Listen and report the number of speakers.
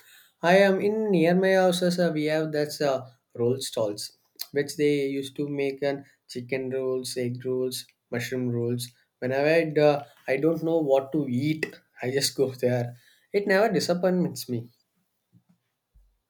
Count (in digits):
1